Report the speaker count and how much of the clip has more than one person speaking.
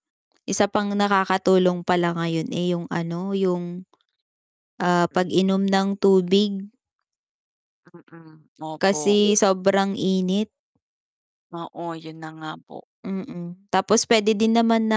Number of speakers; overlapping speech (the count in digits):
2, about 4%